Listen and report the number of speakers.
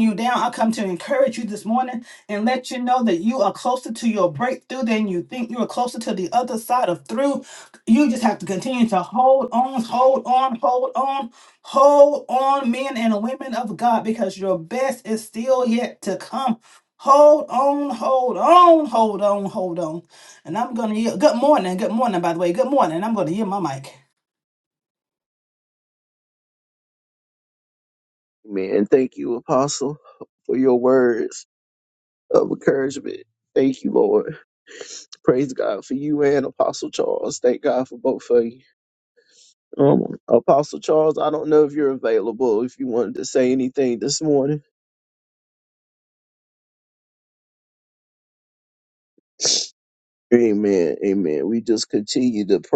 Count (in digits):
2